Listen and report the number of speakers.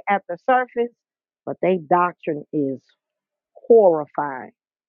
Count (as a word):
one